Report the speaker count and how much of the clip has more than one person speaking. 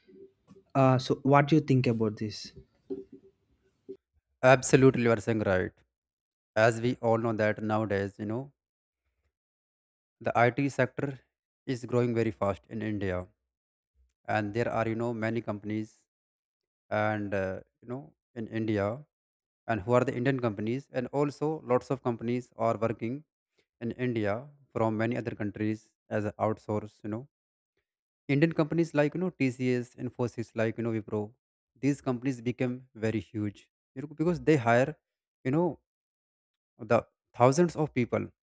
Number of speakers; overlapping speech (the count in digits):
2, no overlap